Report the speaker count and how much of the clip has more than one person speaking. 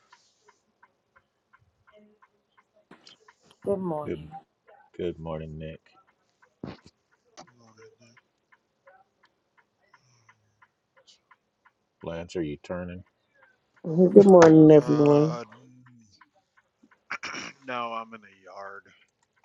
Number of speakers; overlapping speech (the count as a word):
three, about 3%